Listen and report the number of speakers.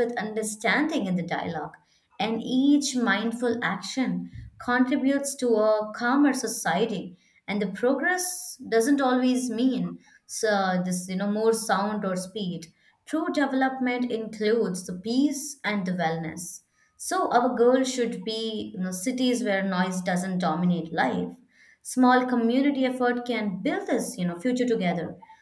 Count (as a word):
one